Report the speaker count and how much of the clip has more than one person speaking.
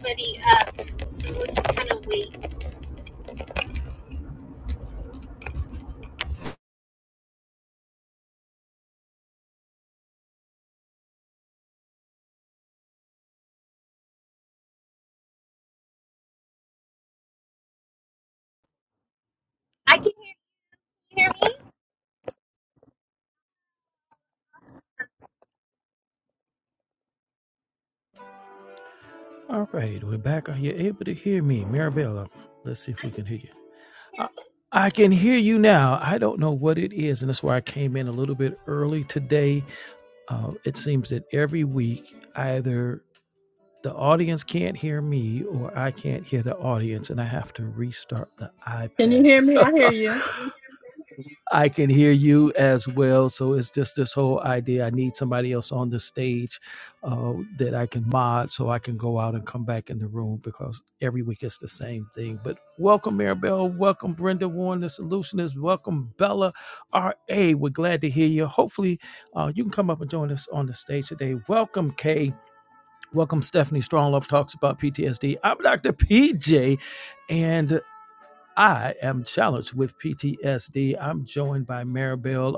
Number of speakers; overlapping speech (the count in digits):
3, under 1%